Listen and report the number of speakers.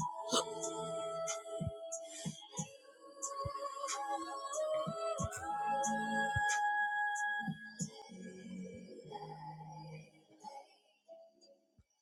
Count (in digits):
0